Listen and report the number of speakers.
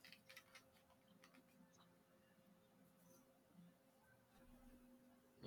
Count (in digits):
0